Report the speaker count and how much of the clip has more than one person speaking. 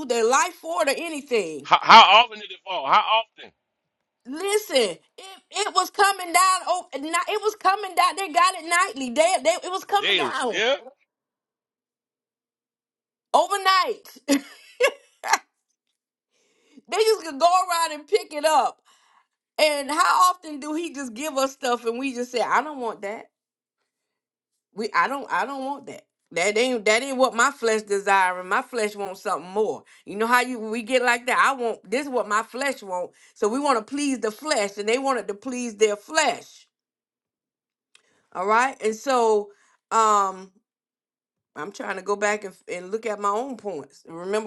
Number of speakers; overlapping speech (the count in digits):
2, about 1%